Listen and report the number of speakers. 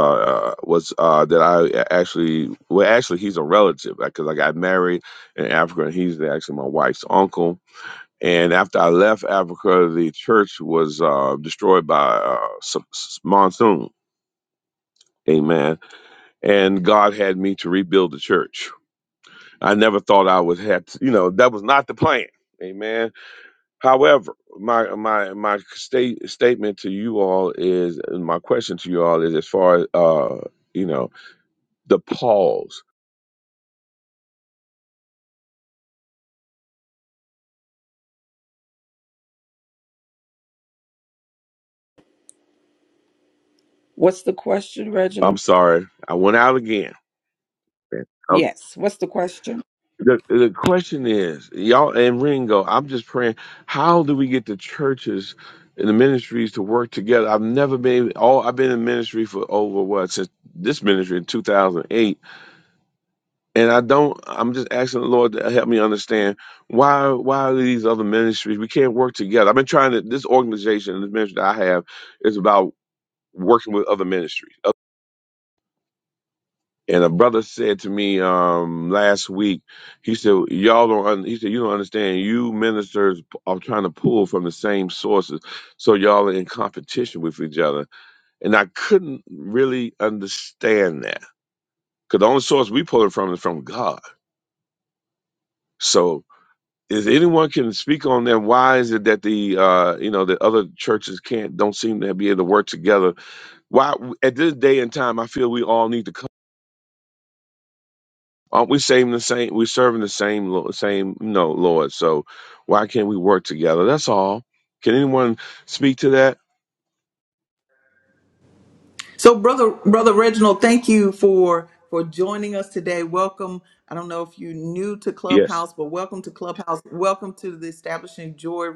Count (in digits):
3